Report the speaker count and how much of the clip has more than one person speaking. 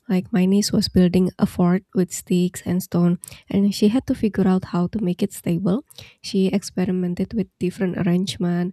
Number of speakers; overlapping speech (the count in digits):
1, no overlap